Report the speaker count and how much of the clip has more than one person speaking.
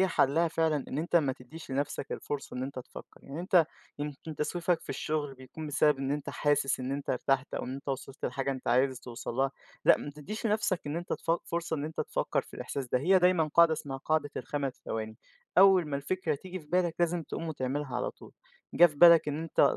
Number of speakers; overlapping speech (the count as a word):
one, no overlap